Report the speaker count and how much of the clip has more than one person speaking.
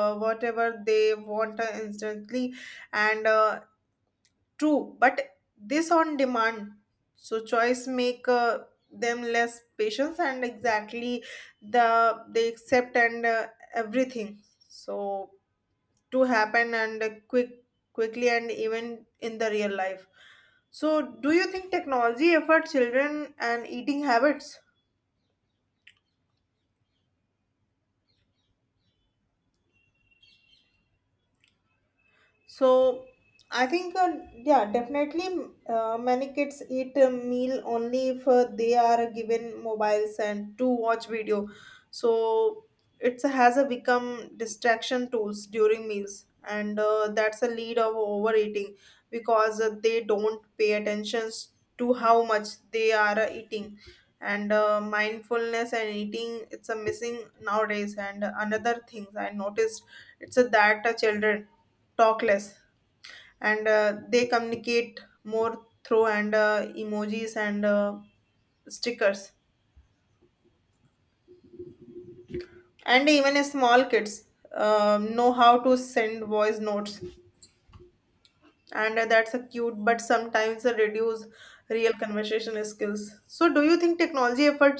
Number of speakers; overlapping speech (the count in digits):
1, no overlap